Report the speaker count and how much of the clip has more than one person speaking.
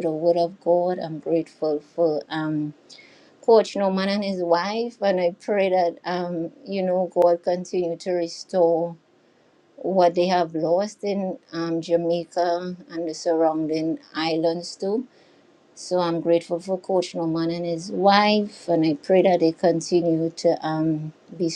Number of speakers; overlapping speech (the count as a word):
one, no overlap